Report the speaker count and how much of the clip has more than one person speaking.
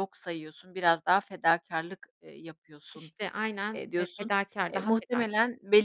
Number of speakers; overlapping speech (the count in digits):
2, about 25%